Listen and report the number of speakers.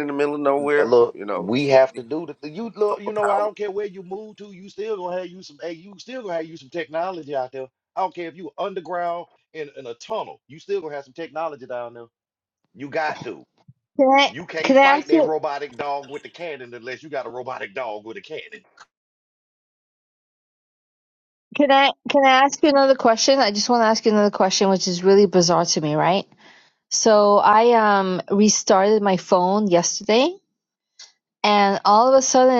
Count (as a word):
three